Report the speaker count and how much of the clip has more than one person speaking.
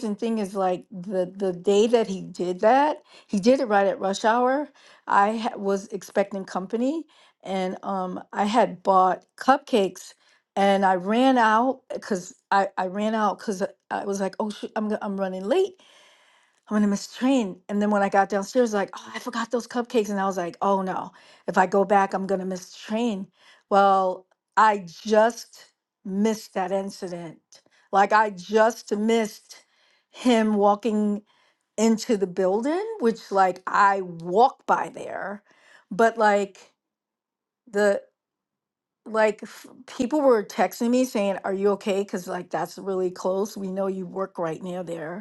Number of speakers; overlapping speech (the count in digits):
1, no overlap